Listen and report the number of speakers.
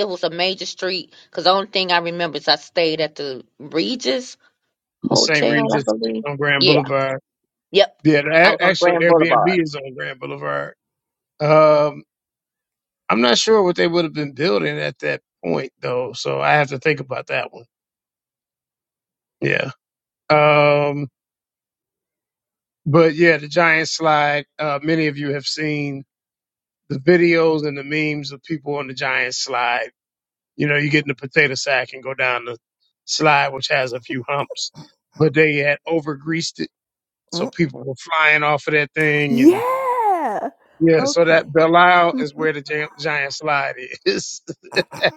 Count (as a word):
three